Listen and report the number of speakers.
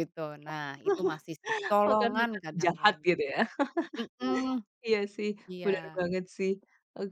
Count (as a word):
two